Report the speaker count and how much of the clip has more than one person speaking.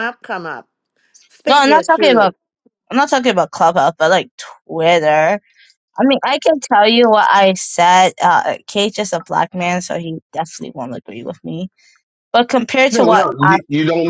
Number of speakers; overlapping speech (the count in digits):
3, about 11%